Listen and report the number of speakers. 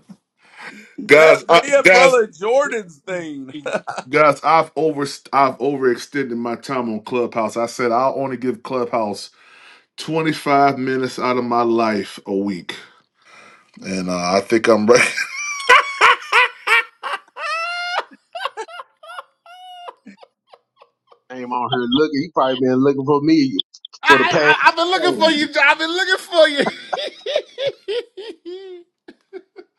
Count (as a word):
three